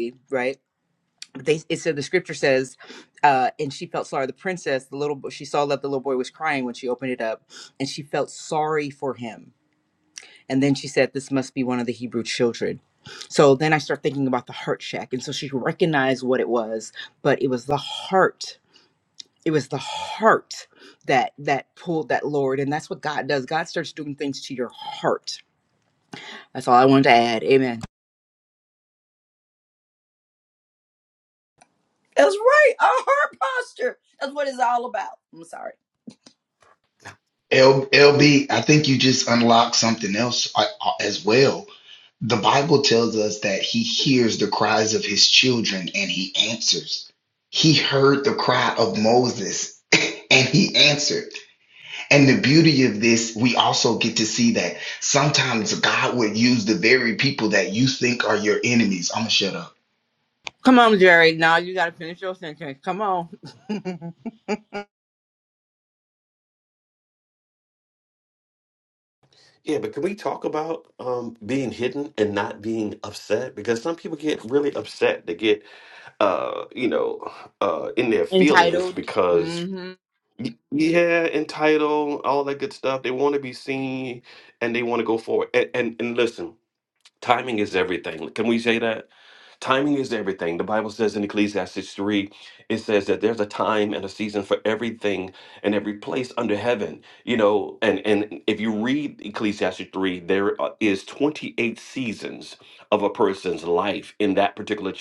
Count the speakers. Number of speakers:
4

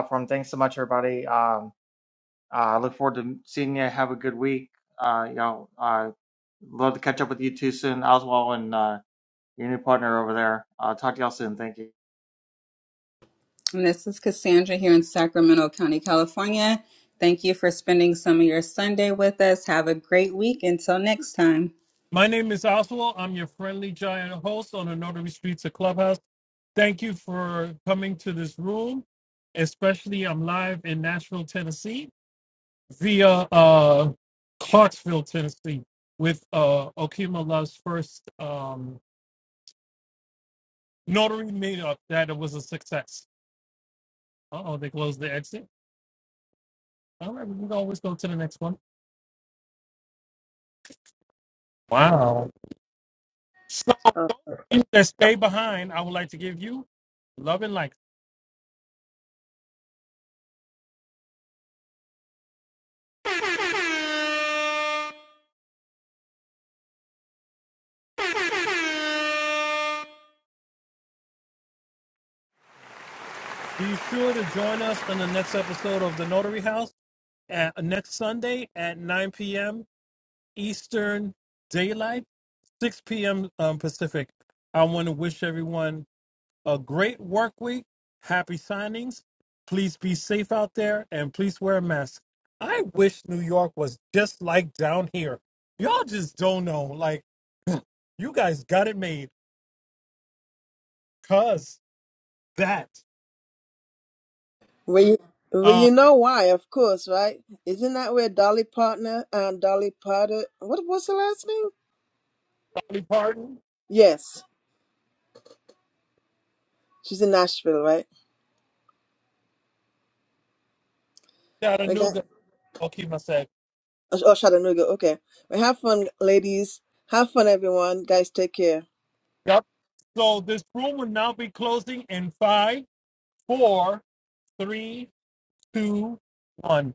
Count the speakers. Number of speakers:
4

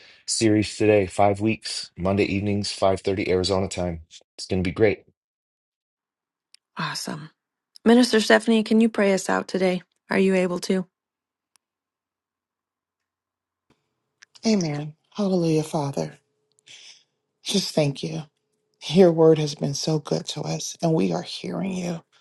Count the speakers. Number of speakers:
3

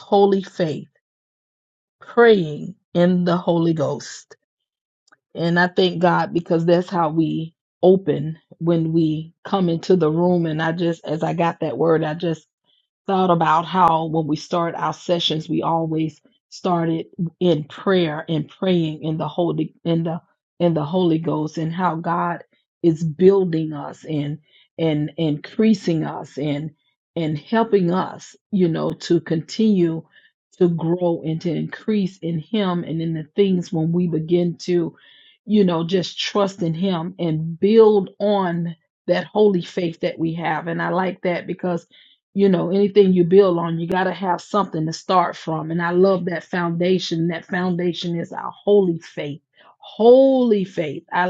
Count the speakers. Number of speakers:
1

